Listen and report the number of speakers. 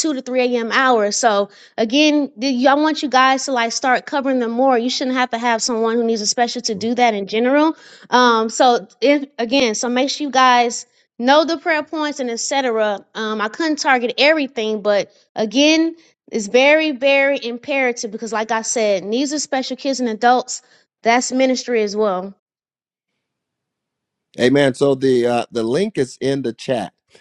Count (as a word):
two